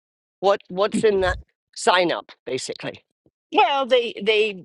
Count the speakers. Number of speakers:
two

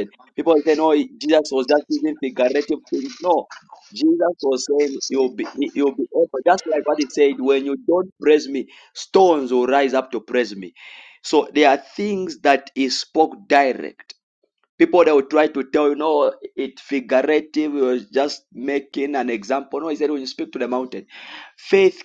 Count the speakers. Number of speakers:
one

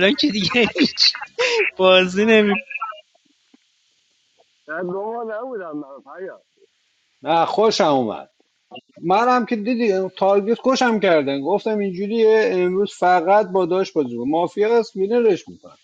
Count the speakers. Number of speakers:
three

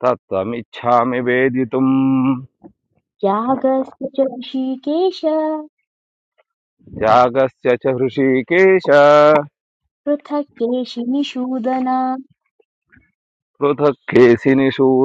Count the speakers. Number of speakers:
two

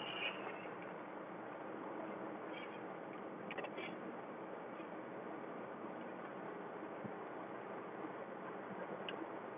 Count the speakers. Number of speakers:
zero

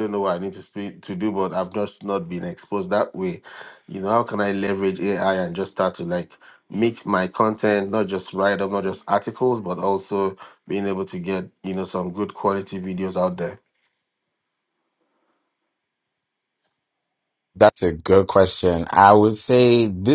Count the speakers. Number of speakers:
two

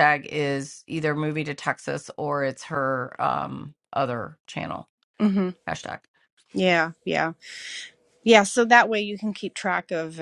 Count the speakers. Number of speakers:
two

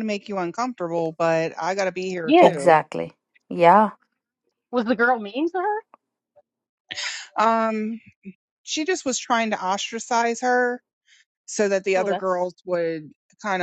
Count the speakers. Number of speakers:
three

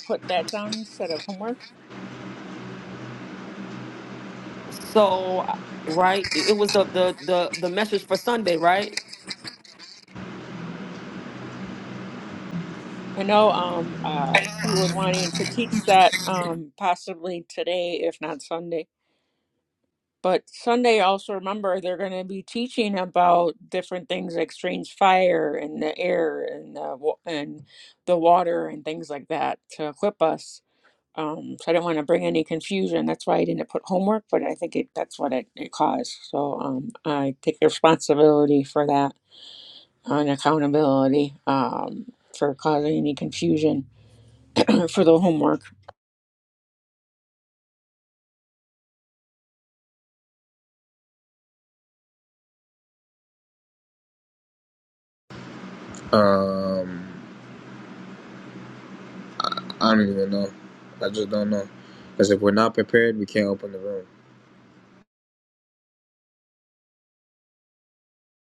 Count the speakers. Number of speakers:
three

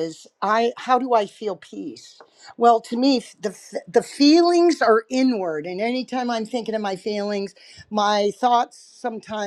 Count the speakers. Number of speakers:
one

